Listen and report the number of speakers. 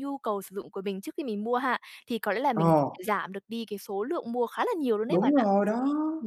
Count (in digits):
2